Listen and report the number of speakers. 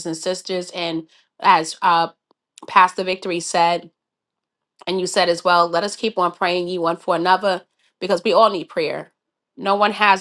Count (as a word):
one